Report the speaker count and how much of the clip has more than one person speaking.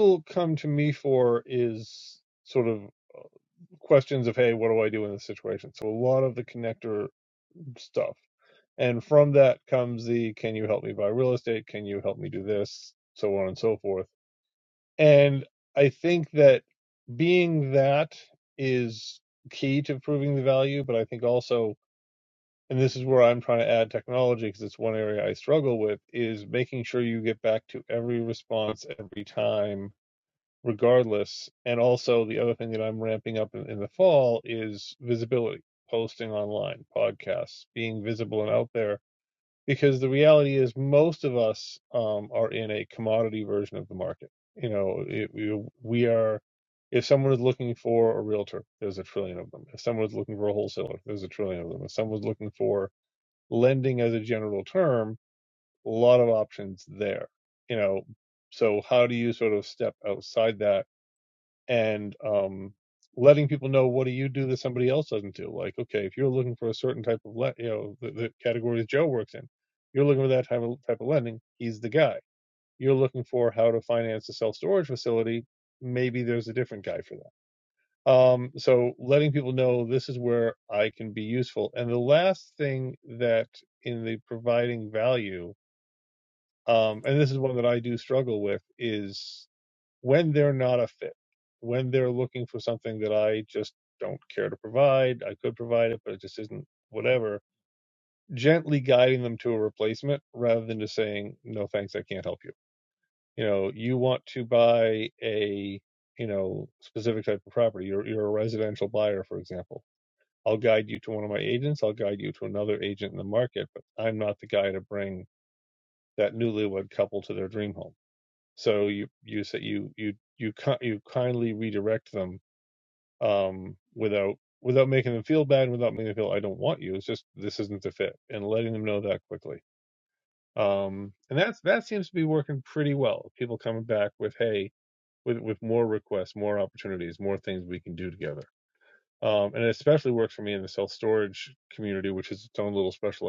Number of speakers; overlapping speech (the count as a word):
one, no overlap